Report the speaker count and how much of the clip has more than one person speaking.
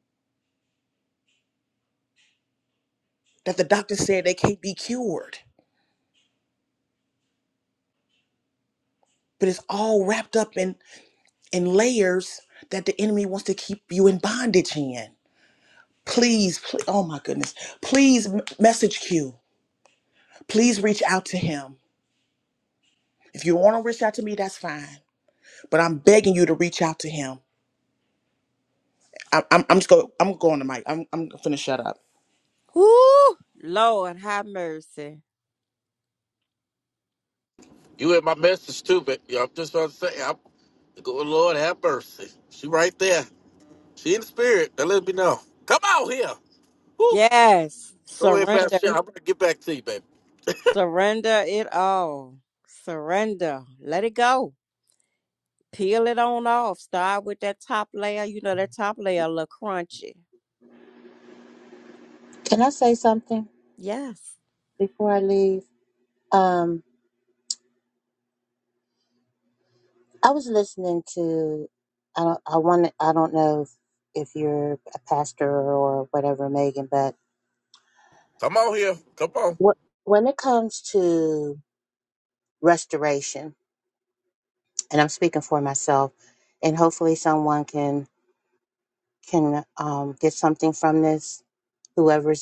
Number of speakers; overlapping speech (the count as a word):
four, about 1%